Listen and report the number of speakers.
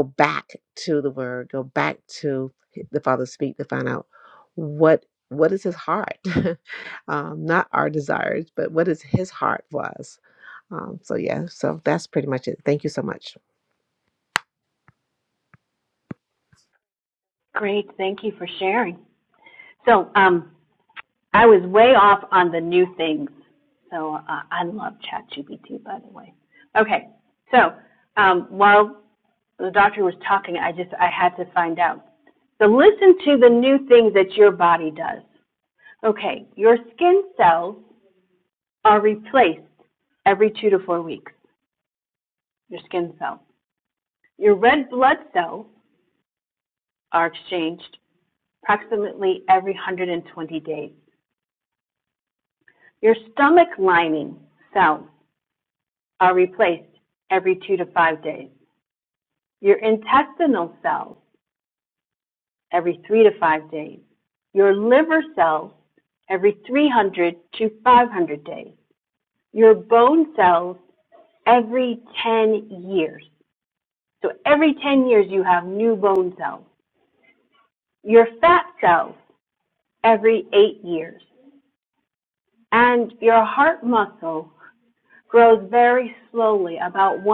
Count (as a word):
two